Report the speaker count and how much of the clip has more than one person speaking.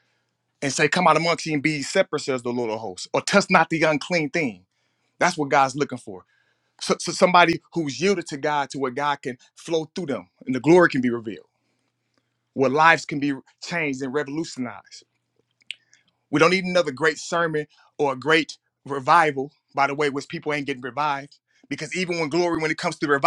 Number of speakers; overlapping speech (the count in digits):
1, no overlap